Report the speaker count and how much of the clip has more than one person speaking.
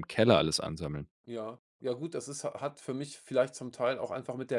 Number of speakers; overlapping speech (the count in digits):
2, no overlap